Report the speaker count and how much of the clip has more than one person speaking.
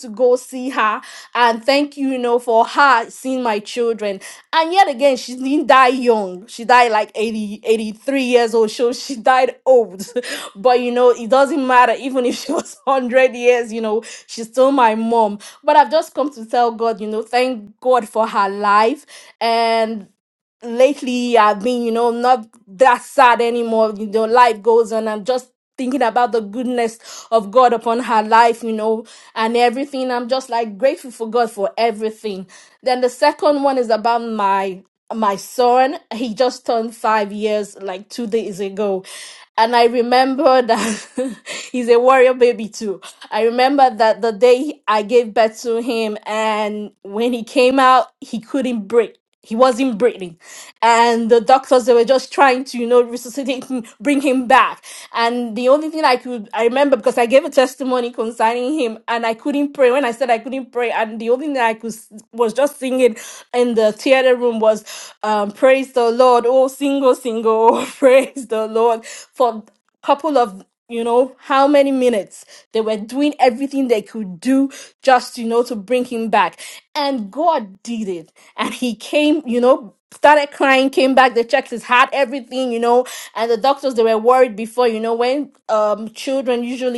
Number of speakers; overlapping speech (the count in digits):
1, no overlap